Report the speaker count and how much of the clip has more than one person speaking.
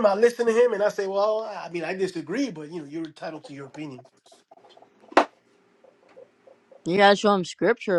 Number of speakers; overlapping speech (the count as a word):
two, no overlap